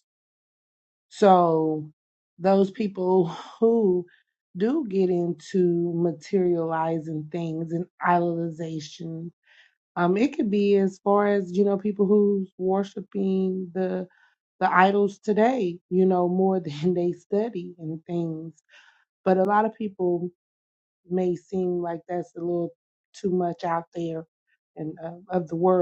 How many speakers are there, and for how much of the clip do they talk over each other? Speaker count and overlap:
1, no overlap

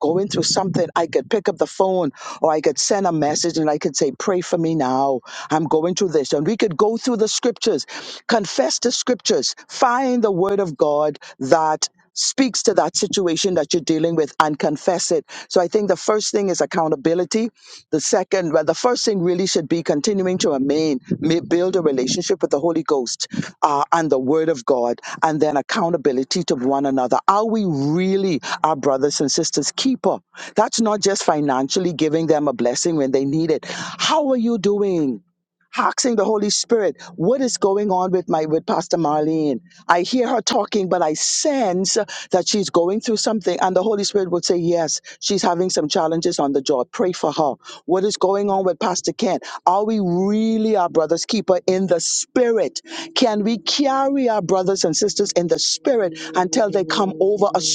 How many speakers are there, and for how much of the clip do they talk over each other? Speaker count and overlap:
1, no overlap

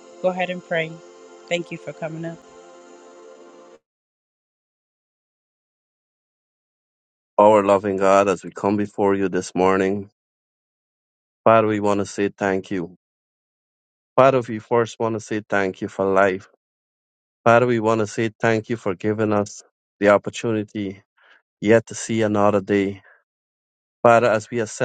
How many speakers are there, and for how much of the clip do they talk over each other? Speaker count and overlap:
2, no overlap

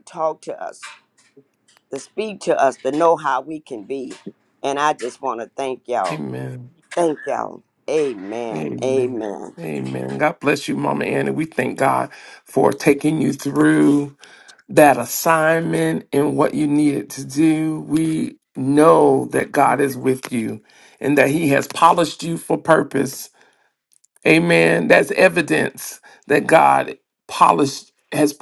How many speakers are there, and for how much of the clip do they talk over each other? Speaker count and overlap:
2, about 2%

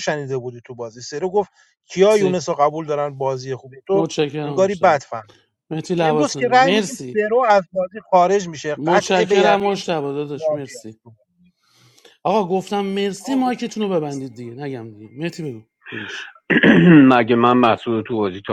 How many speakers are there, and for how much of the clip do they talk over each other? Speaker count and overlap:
3, about 18%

